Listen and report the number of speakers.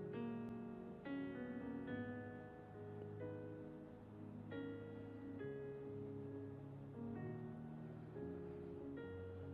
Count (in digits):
0